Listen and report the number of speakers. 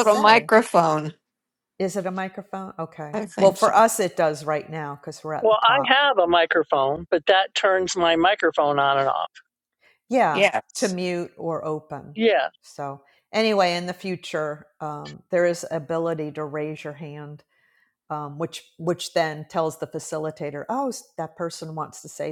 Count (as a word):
three